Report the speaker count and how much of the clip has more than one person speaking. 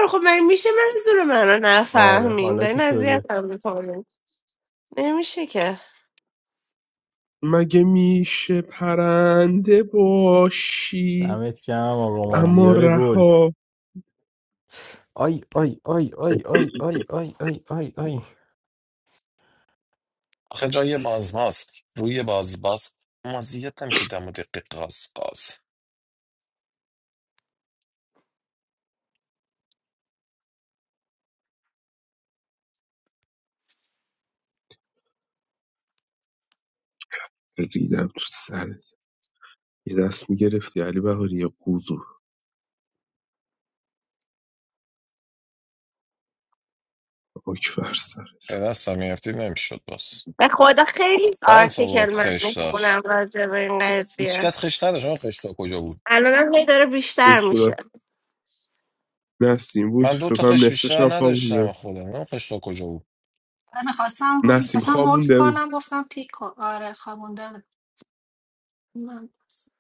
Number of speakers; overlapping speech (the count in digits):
5, about 10%